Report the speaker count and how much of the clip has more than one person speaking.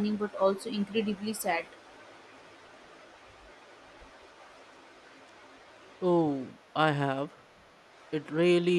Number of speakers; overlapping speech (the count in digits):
2, no overlap